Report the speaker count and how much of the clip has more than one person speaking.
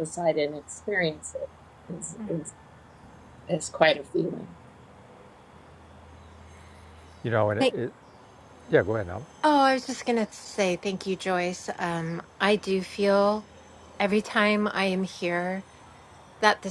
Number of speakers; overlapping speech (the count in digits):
3, about 1%